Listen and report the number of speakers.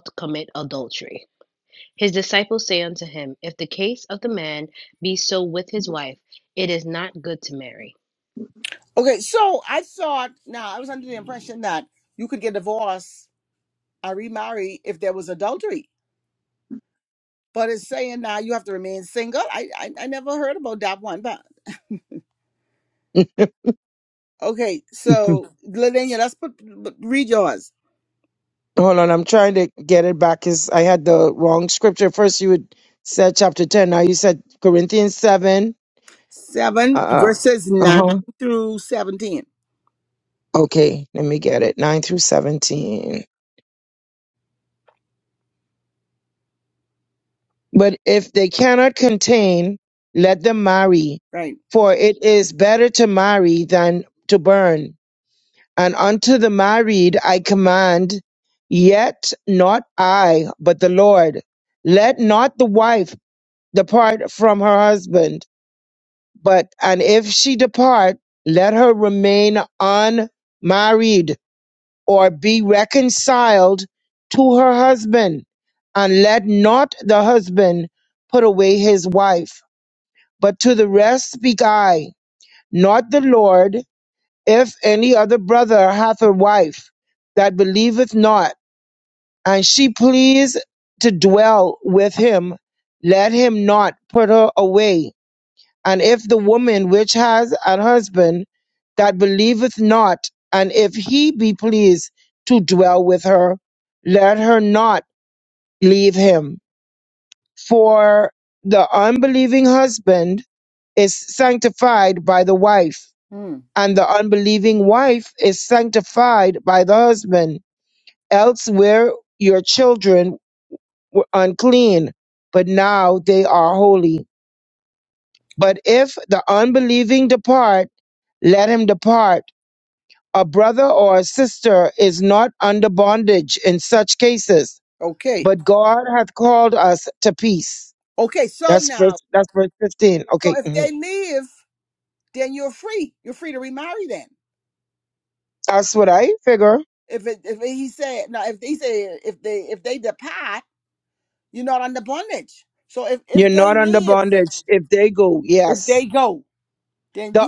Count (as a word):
three